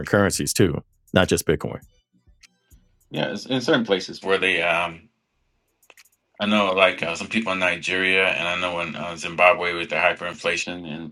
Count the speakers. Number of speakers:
2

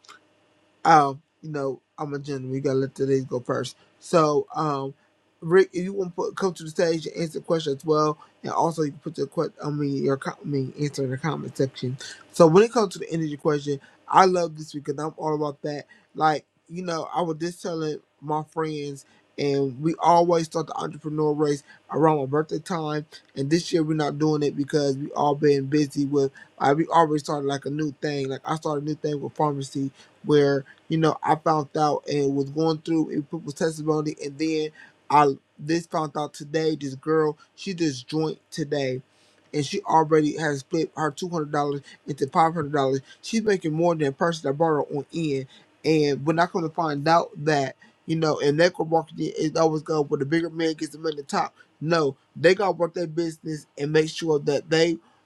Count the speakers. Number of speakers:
1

